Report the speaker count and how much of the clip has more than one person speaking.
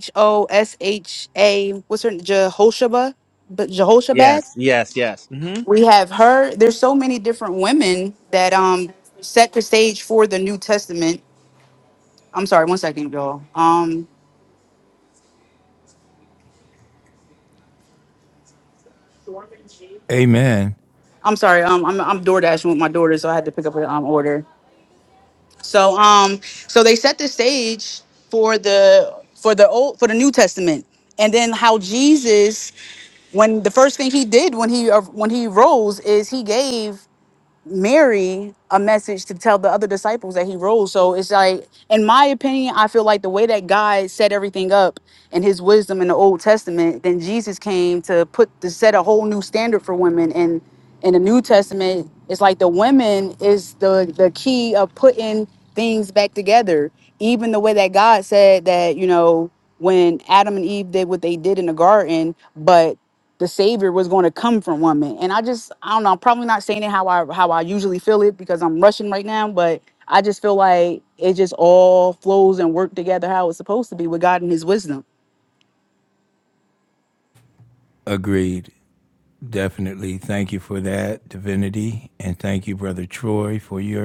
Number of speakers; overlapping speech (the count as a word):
three, under 1%